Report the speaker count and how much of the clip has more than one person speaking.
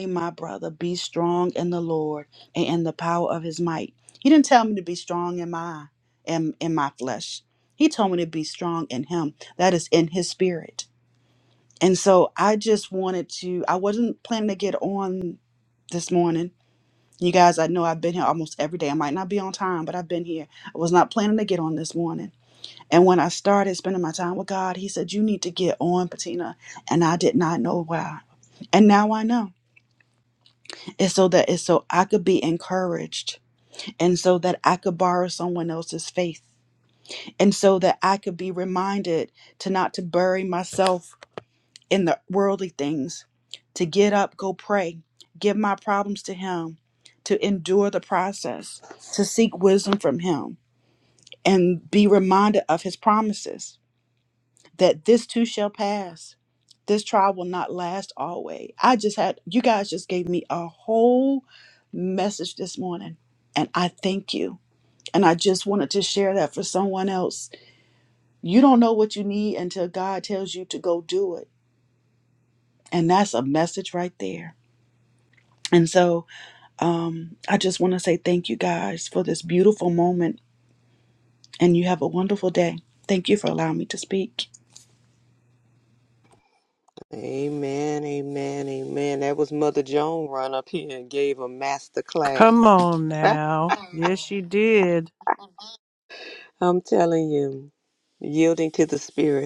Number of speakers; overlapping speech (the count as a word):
three, about 1%